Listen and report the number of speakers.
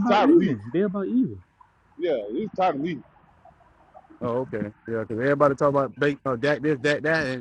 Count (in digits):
3